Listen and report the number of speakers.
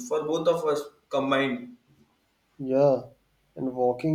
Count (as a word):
two